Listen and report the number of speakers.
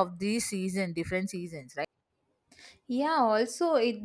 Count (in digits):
2